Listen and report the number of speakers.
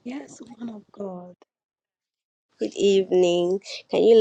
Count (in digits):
2